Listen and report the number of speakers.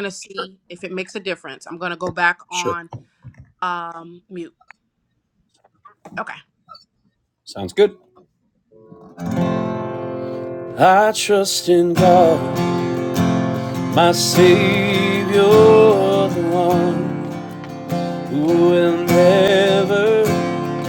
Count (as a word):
two